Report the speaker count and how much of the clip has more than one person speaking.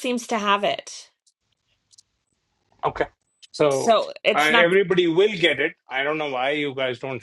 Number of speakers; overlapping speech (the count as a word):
two, about 9%